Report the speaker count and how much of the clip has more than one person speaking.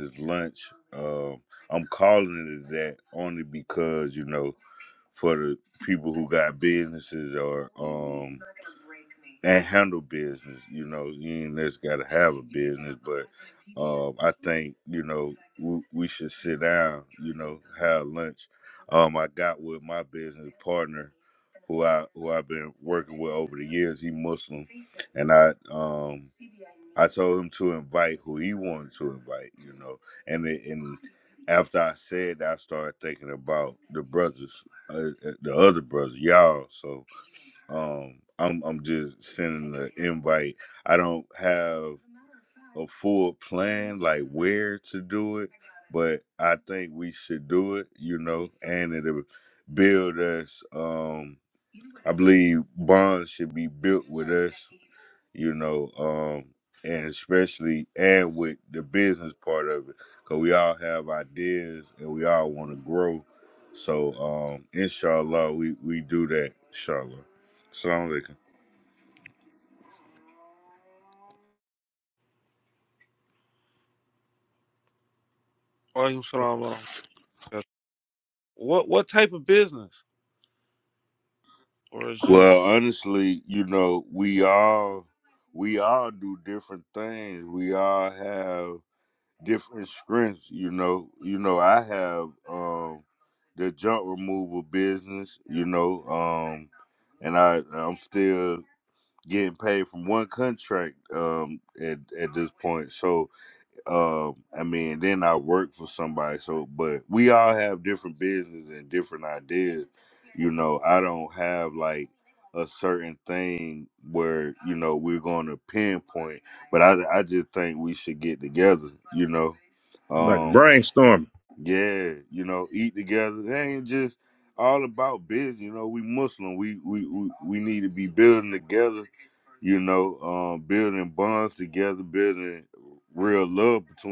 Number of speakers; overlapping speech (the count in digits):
3, about 1%